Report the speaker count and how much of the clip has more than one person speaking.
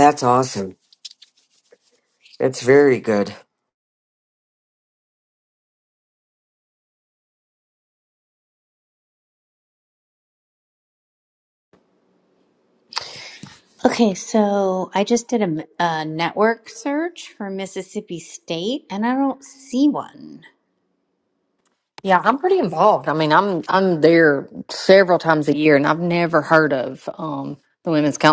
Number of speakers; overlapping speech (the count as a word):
three, no overlap